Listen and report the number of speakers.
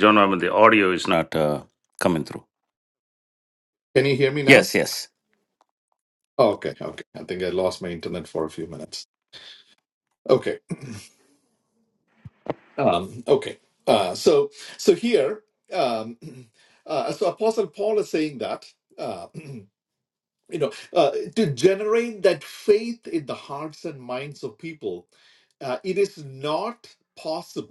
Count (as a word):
two